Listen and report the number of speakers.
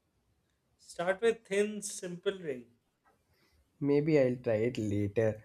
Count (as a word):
two